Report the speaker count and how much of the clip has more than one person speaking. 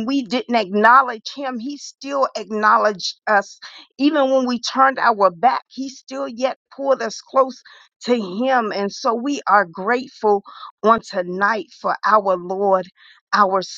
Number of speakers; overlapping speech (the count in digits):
1, no overlap